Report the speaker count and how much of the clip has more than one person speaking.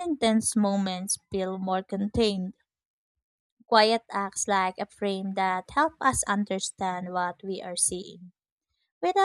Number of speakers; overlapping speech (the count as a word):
one, no overlap